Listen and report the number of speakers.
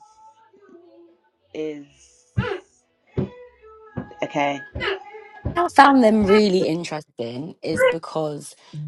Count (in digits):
2